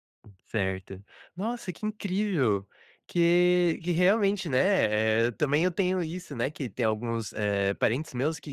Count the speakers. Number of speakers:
1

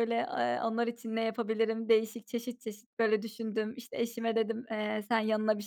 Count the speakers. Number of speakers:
1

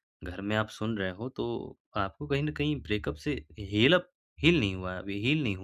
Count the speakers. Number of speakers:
1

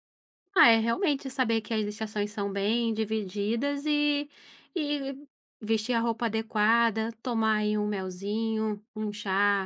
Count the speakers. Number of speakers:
1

